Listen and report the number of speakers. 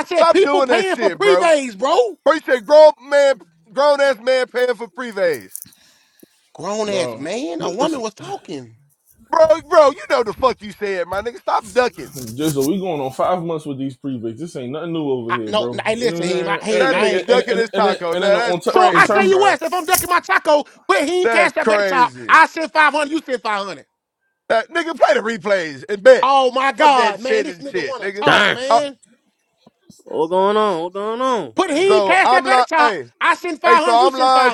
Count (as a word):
four